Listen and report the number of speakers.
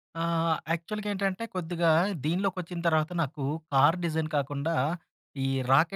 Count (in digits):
1